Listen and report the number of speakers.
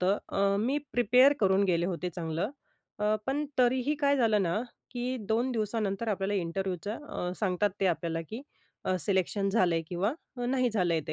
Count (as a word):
one